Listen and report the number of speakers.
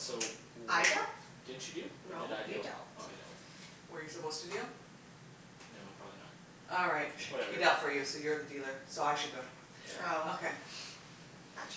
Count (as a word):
three